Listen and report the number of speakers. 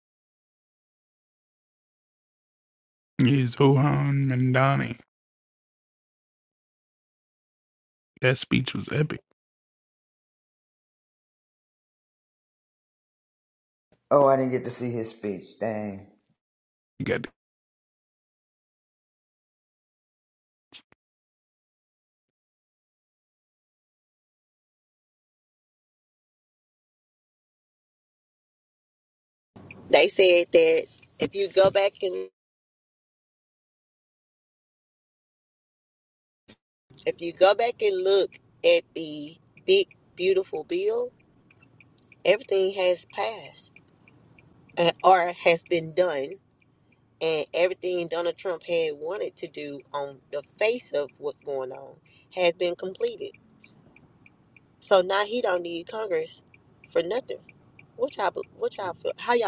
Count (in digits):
3